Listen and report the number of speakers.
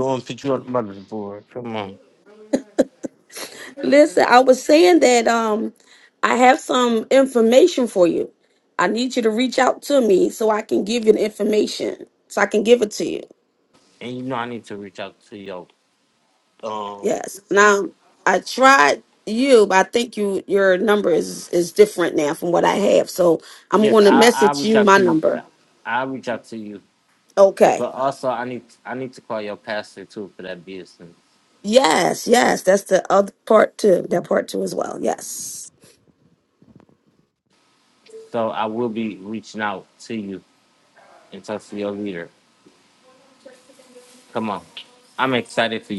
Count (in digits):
2